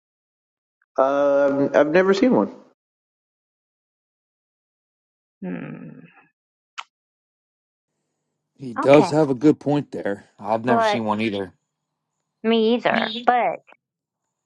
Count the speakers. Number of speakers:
three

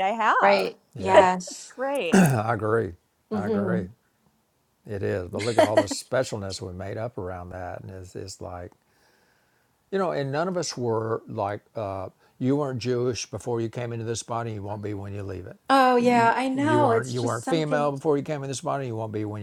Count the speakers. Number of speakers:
three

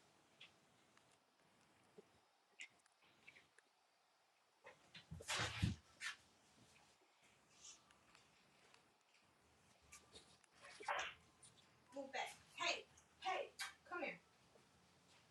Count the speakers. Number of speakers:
zero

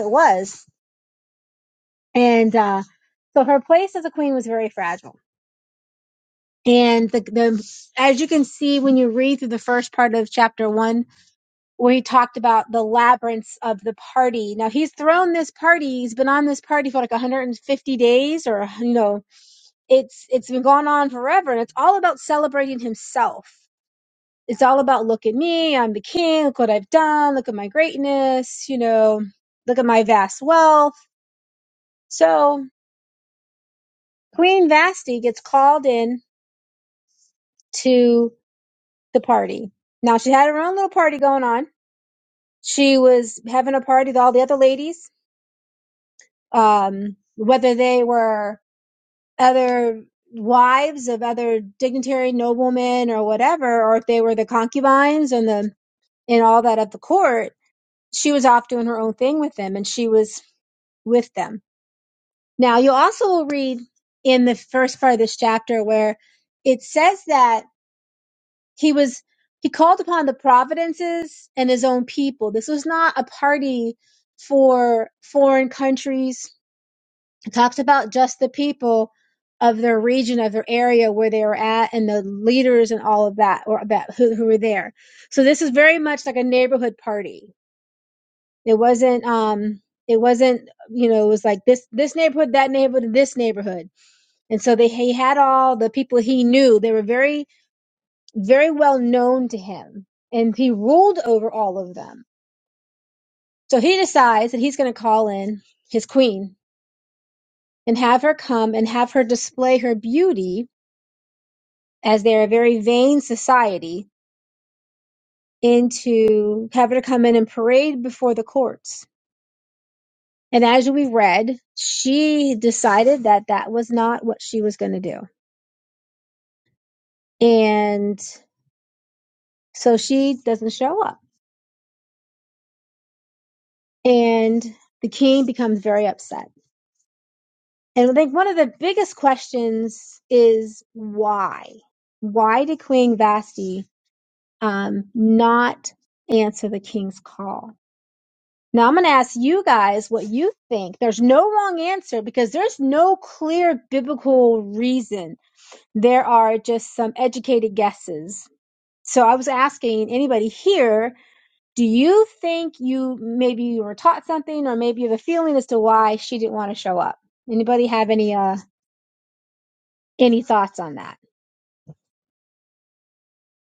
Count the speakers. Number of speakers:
one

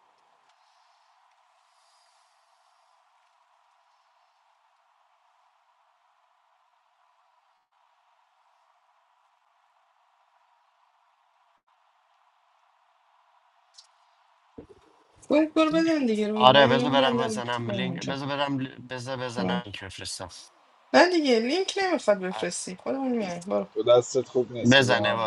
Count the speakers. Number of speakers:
three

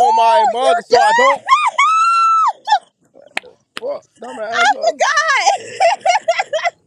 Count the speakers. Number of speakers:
two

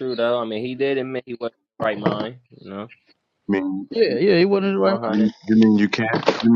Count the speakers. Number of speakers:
three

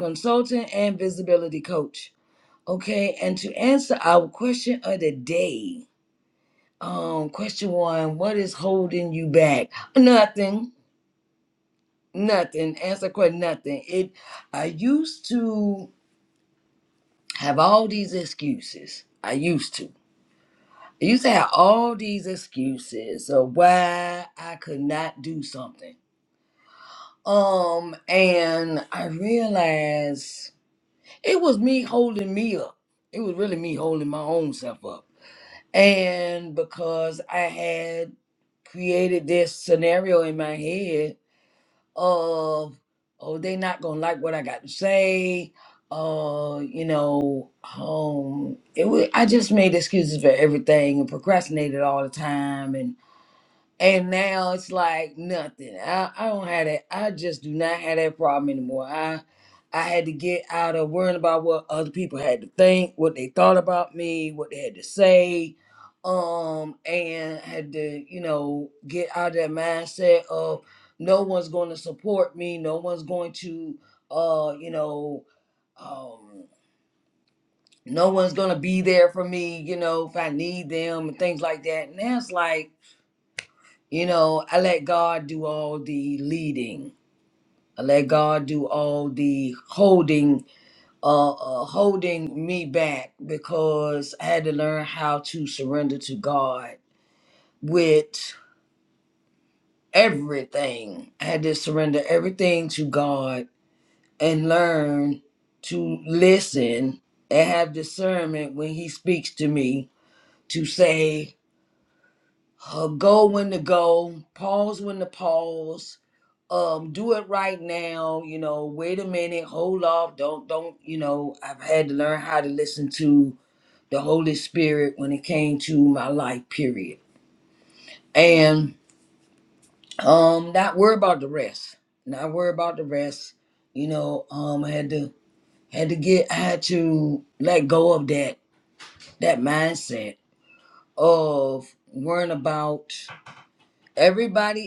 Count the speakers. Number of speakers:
one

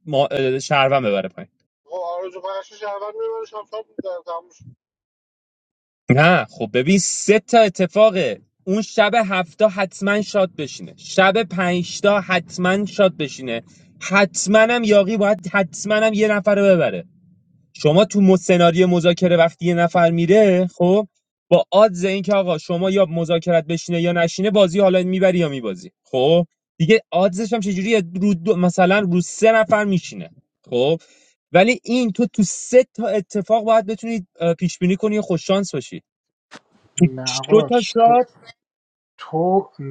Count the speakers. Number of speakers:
three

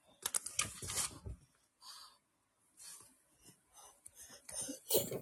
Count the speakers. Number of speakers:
zero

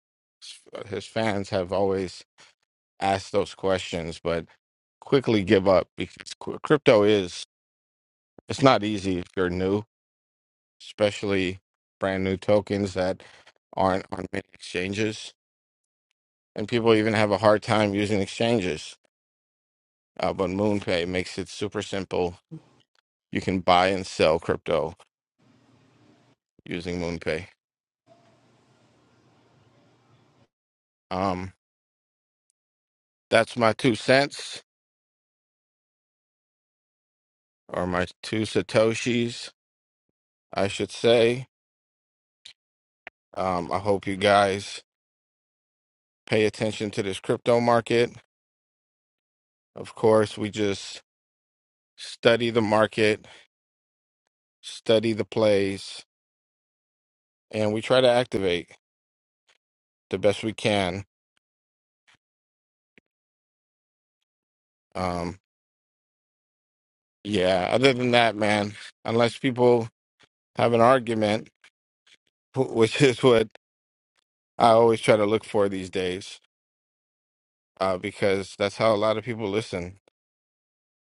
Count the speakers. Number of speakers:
one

